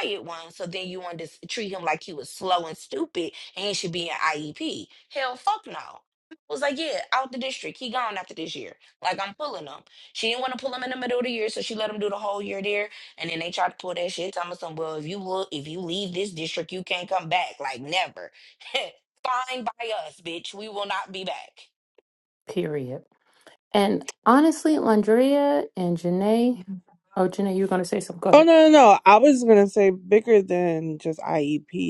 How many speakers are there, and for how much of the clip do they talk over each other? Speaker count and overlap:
3, about 1%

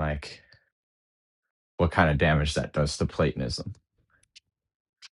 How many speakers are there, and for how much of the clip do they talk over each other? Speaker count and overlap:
1, no overlap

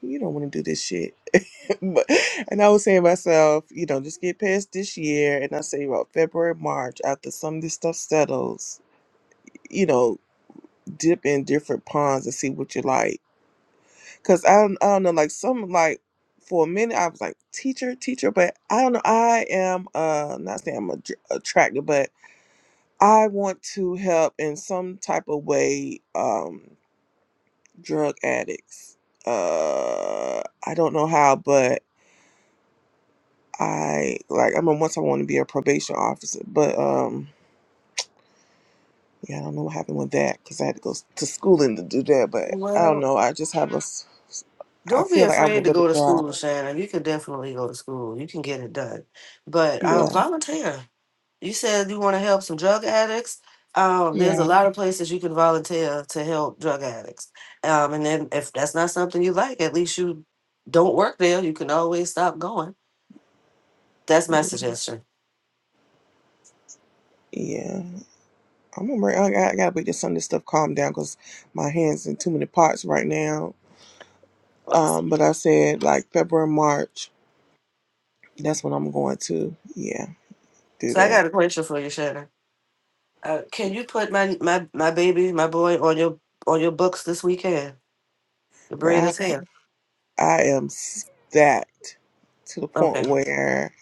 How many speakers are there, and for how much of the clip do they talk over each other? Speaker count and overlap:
2, about 4%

